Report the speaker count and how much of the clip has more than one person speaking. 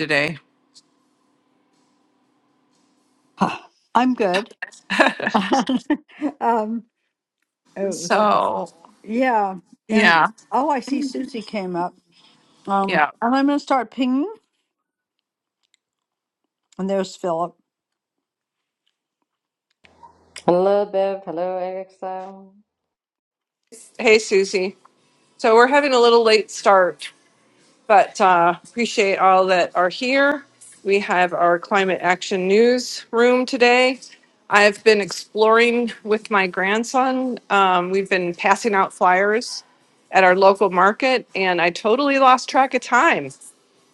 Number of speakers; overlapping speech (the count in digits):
3, about 2%